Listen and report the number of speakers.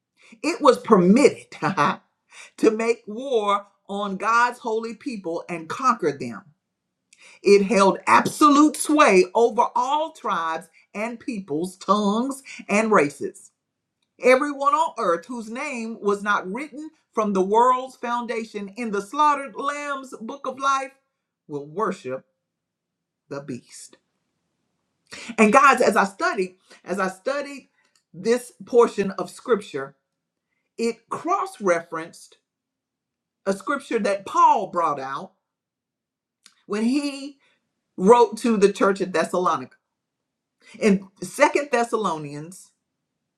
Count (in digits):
1